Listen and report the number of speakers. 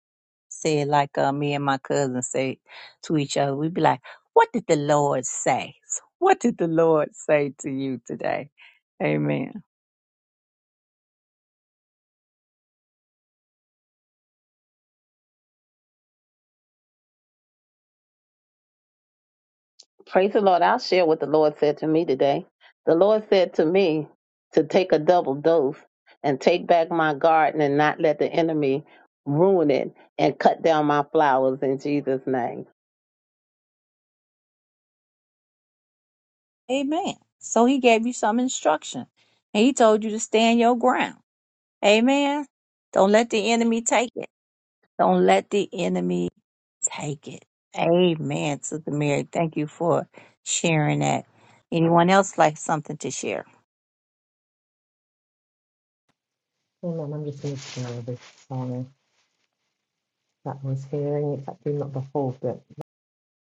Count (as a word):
three